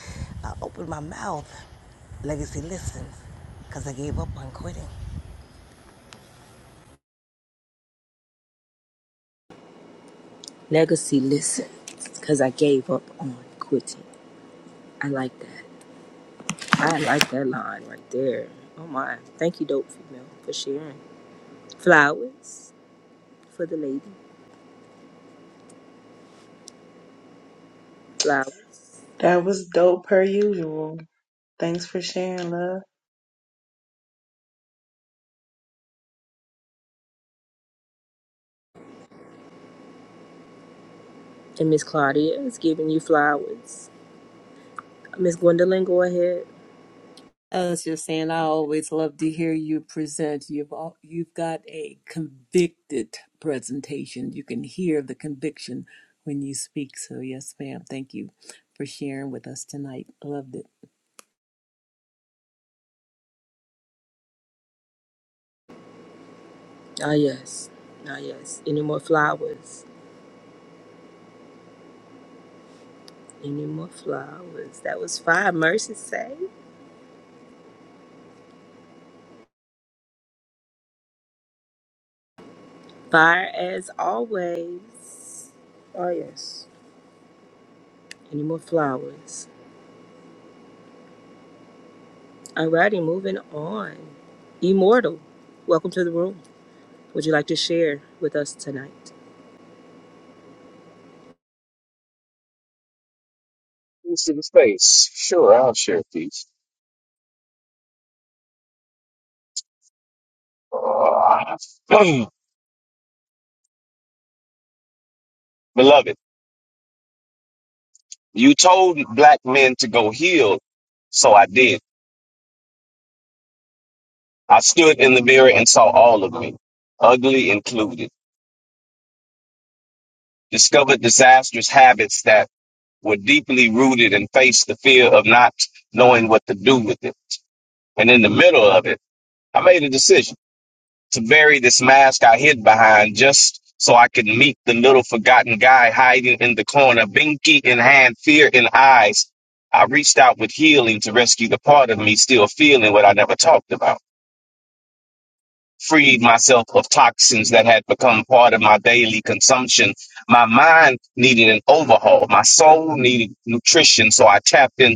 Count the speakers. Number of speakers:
five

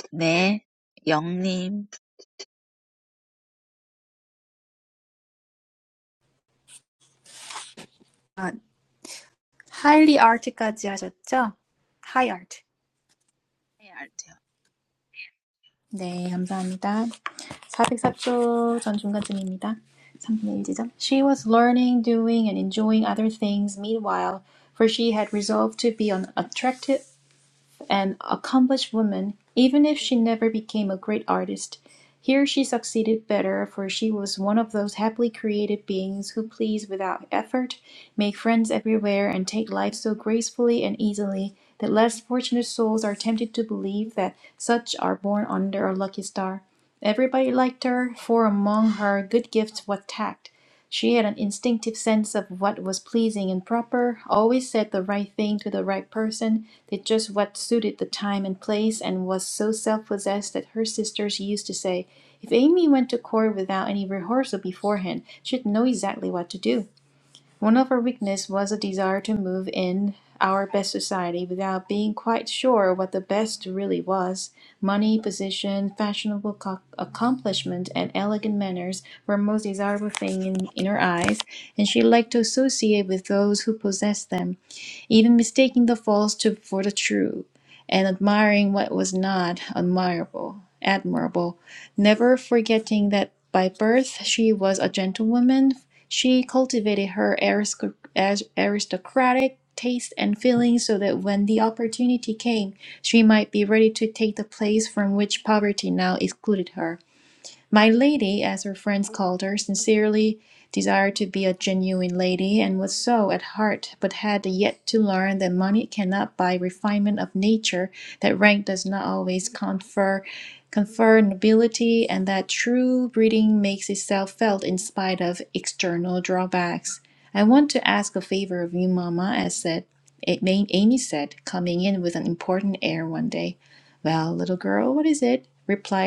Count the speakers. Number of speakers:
two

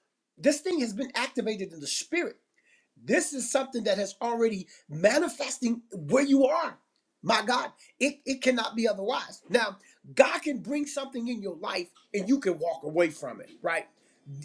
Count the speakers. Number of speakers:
one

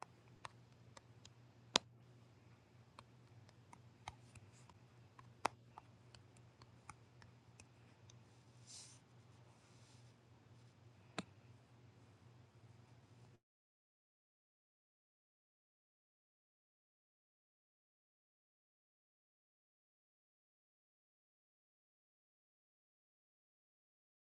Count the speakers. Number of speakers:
zero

